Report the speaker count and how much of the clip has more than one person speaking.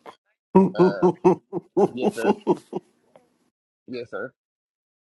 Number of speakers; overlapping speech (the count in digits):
1, no overlap